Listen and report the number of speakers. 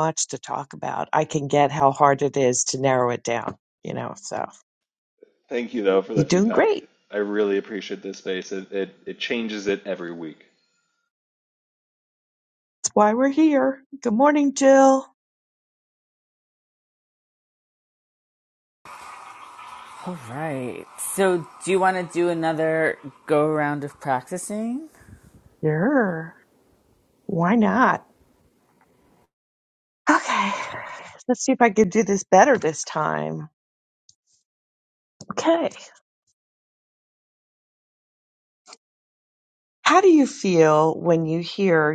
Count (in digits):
3